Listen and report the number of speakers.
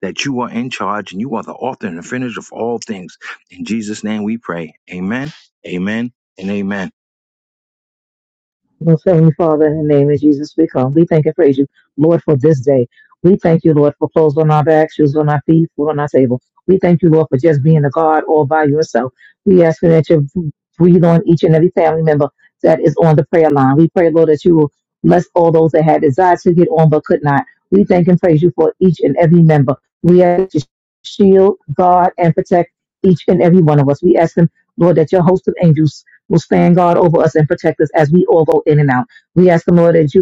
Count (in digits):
2